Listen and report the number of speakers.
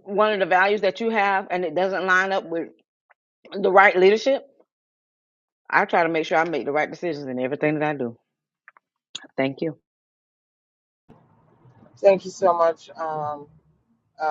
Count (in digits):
2